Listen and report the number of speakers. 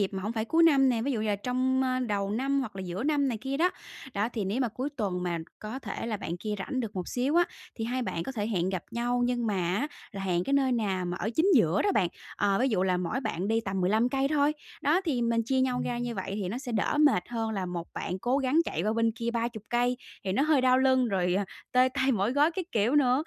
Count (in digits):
1